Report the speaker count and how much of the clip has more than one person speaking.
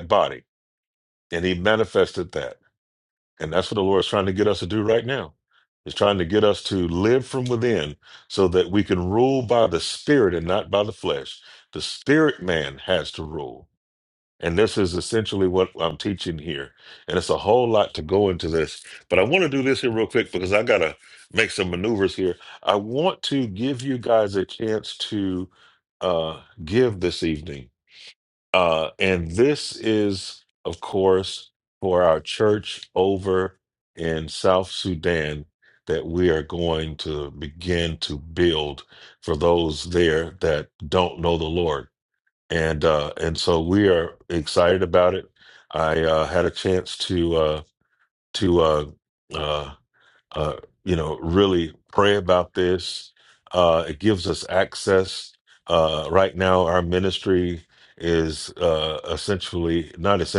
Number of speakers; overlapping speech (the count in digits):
1, no overlap